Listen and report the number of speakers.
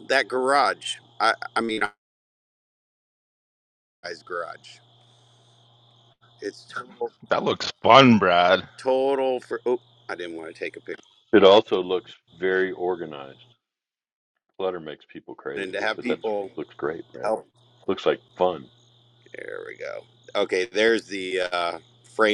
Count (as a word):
three